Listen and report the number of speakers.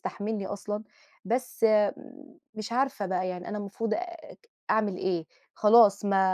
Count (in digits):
1